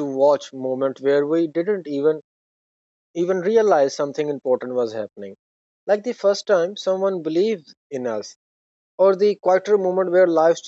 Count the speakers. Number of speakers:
one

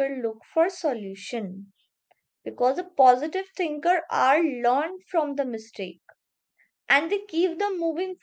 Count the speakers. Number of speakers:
one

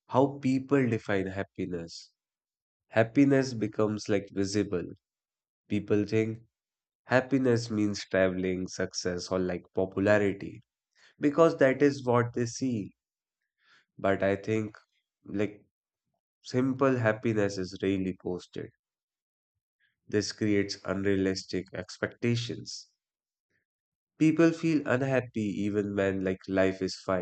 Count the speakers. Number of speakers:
one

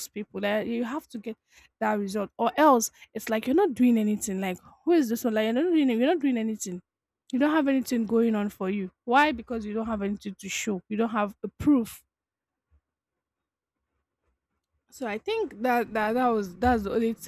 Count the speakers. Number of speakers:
one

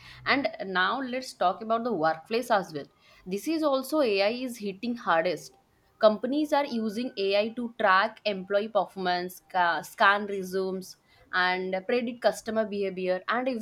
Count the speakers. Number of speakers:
one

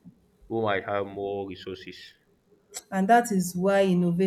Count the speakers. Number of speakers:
two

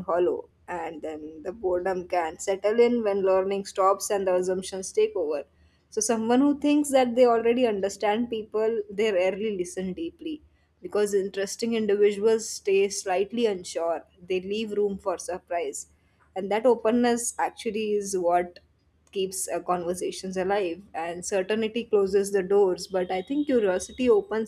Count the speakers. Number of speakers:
one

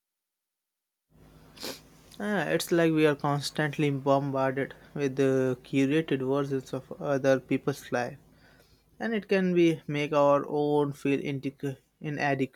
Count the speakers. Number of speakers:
one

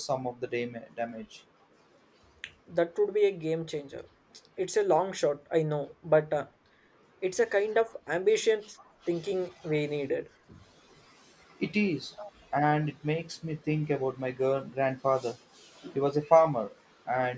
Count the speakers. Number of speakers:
two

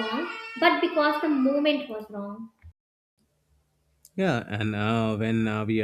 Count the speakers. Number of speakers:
two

